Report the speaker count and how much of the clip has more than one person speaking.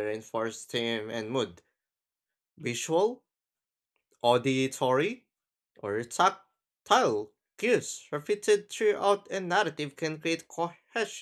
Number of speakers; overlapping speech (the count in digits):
1, no overlap